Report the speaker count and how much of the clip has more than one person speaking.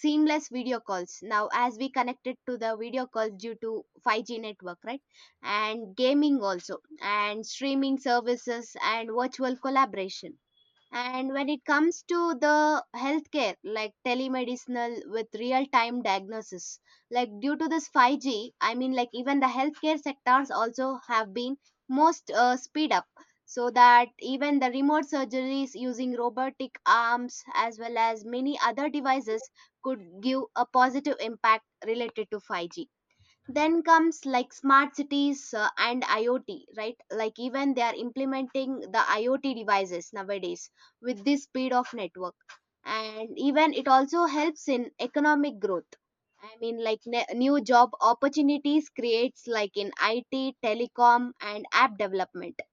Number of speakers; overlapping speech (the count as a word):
one, no overlap